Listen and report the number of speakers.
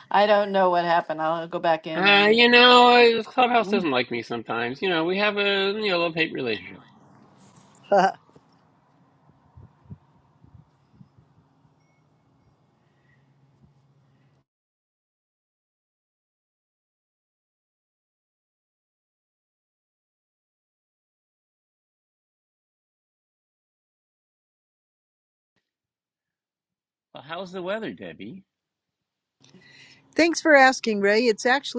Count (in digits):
3